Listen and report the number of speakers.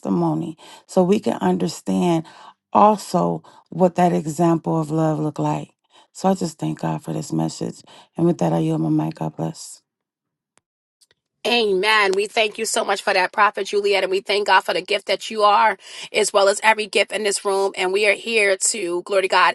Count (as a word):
two